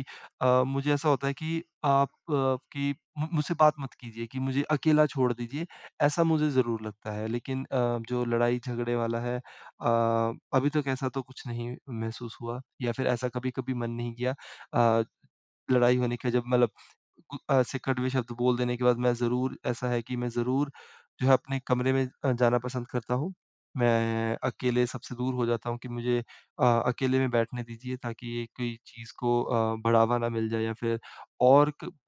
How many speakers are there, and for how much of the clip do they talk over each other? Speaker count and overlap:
one, no overlap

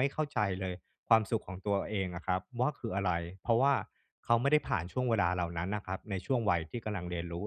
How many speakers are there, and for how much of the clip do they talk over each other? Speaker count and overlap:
one, no overlap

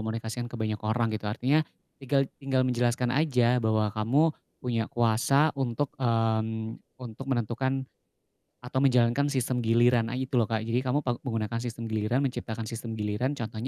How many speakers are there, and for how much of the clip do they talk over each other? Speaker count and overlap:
one, no overlap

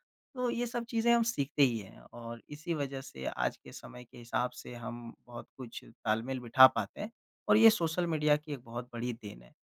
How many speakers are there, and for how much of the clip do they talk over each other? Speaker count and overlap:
one, no overlap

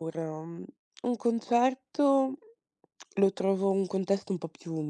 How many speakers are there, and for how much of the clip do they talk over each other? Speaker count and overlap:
one, no overlap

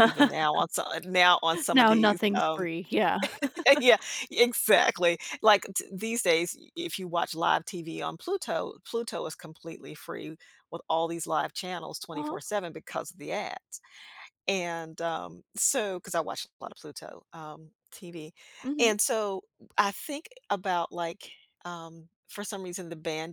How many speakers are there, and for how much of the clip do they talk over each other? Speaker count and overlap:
two, about 6%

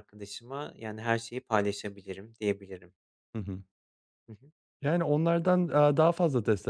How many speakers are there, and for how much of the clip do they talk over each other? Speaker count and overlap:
two, no overlap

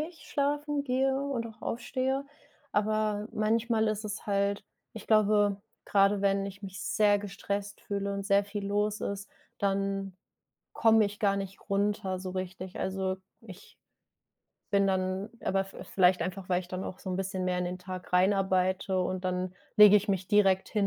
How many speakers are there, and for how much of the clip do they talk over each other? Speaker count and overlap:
one, no overlap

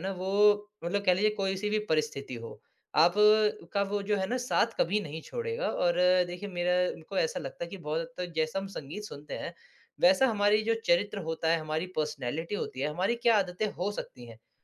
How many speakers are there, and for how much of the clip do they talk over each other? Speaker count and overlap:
one, no overlap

